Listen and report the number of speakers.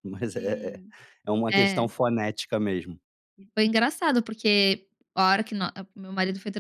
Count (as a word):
two